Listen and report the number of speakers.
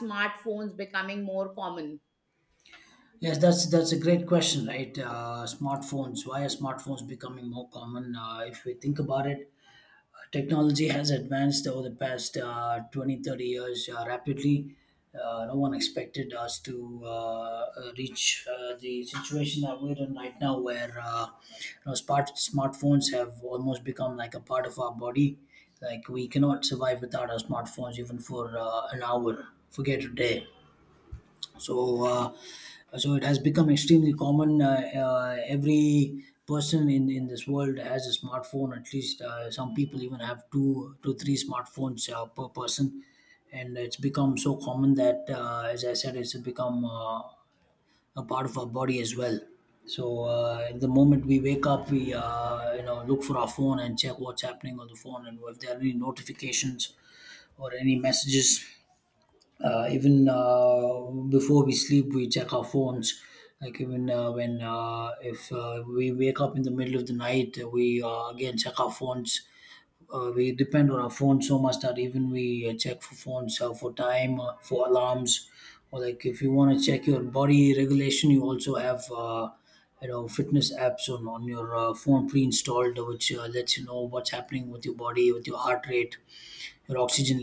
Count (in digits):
2